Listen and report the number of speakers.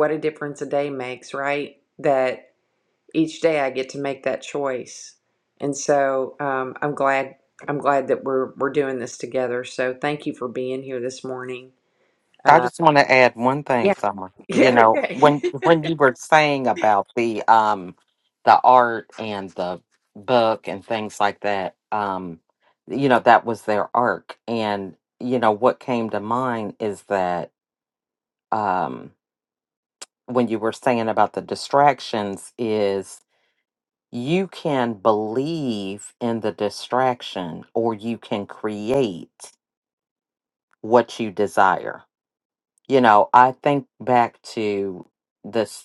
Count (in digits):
2